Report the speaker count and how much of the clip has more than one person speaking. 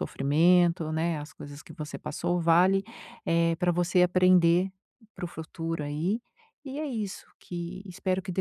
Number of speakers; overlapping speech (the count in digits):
1, no overlap